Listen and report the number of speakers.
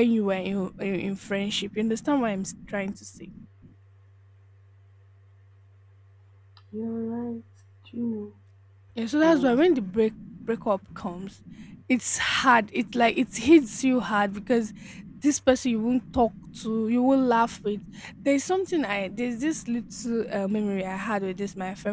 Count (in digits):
2